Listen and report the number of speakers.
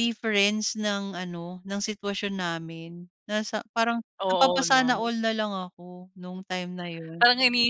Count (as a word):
two